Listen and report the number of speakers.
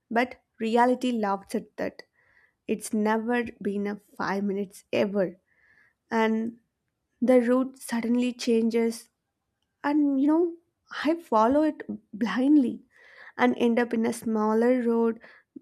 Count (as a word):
one